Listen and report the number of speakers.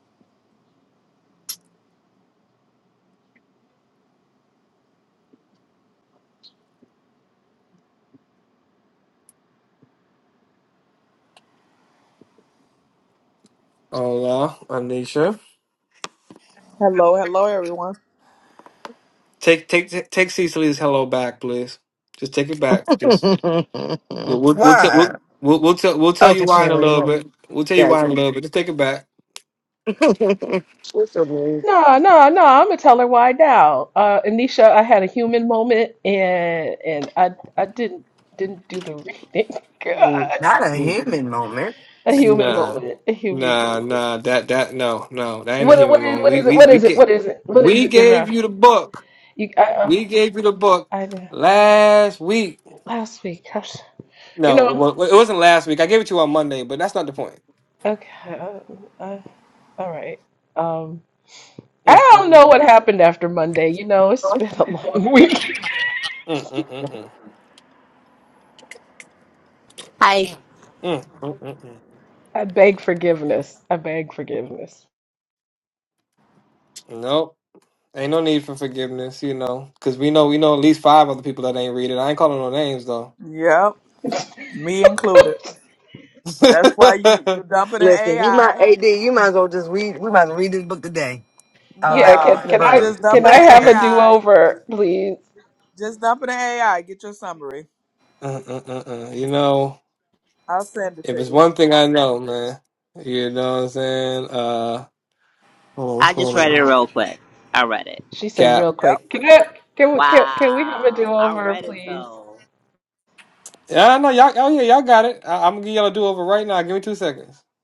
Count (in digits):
5